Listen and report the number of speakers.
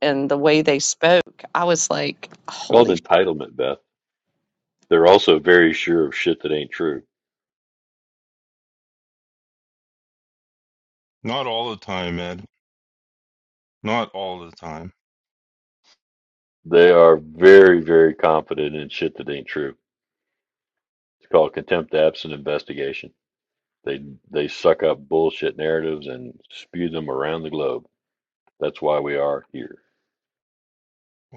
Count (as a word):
three